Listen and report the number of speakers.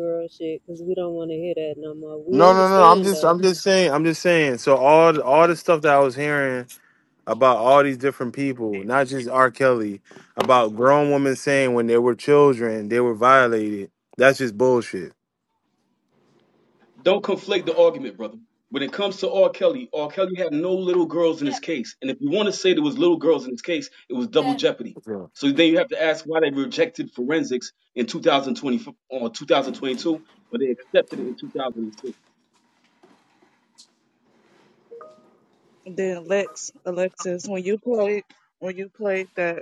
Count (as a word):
four